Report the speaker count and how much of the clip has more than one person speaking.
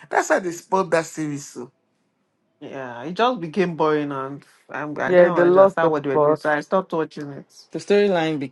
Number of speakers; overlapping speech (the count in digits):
3, about 15%